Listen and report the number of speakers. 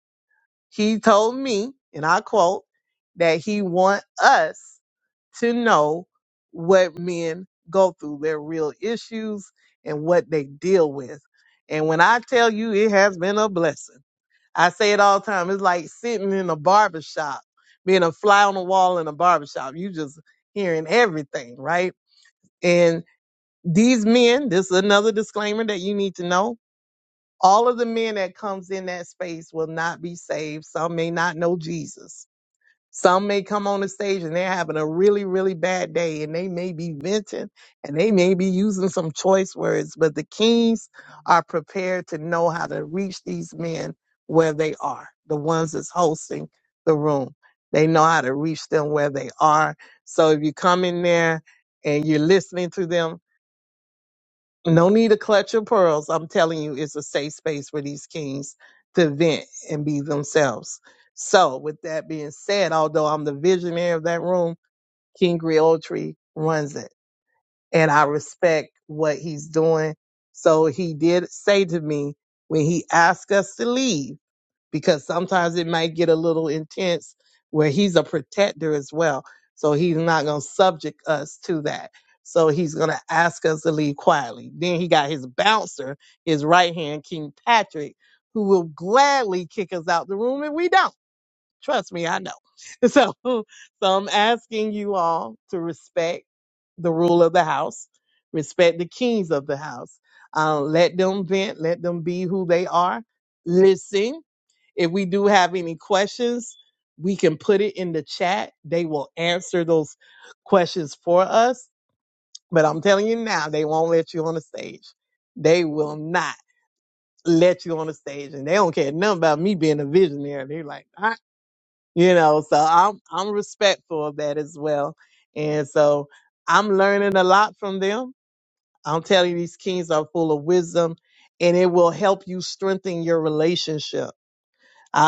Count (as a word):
one